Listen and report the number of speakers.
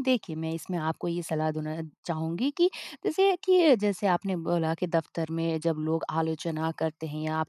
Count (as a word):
one